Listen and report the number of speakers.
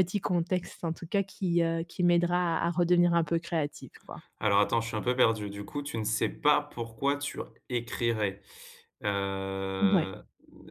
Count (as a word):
two